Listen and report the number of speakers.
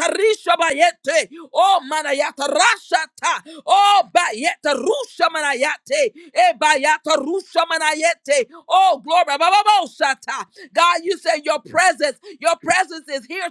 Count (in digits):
1